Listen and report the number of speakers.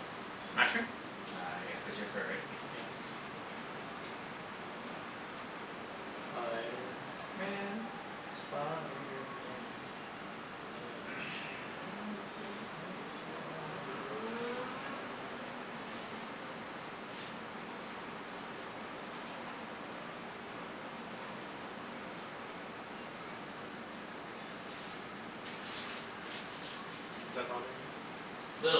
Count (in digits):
2